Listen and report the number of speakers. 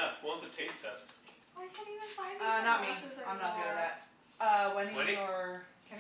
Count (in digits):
3